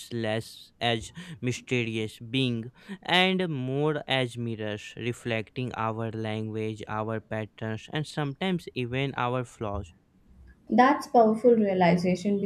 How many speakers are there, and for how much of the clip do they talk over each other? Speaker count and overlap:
two, no overlap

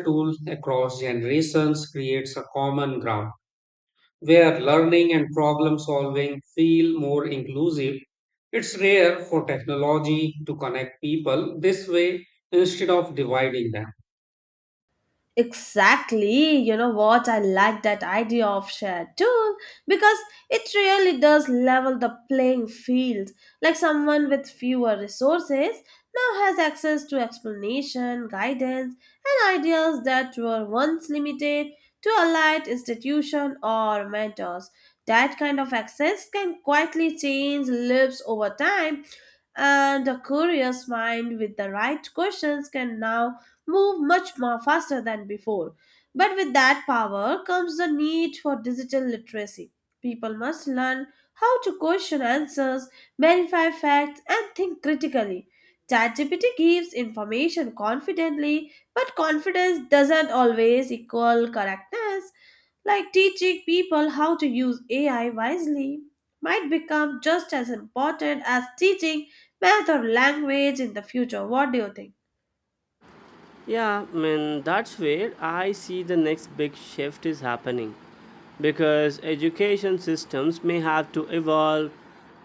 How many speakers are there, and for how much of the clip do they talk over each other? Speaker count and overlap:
three, no overlap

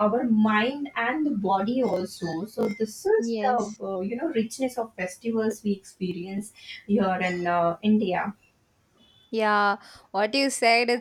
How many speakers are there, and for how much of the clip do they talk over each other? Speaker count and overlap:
two, about 3%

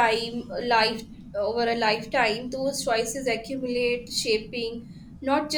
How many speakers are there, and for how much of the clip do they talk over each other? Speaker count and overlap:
one, no overlap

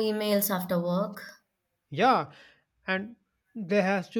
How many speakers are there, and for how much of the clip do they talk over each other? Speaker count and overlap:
two, no overlap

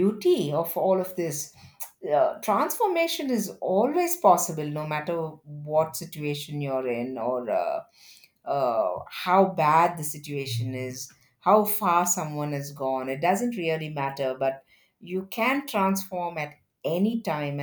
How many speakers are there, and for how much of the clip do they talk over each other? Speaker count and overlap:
one, no overlap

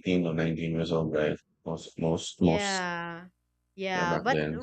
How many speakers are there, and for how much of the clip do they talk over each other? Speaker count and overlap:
two, about 18%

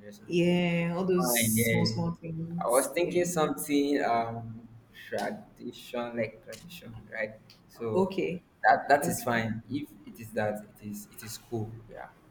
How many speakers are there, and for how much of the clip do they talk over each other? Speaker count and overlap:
two, about 9%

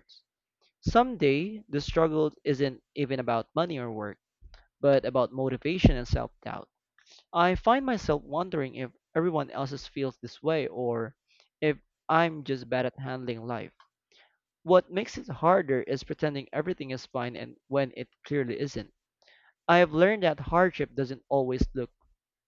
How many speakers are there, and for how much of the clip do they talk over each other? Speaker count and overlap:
one, no overlap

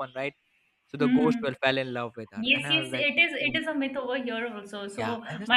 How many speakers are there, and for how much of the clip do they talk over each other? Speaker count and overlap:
two, about 34%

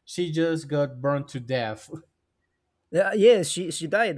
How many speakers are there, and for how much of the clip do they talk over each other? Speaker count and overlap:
two, no overlap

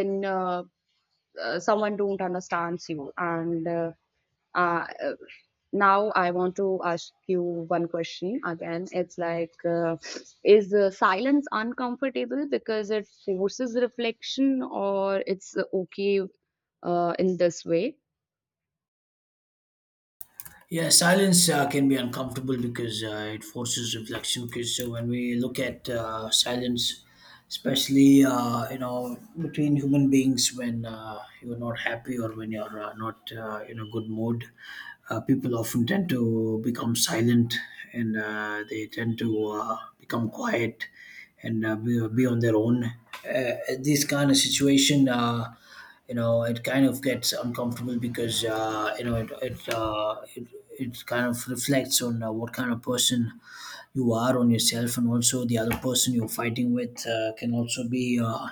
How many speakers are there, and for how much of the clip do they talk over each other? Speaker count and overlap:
two, no overlap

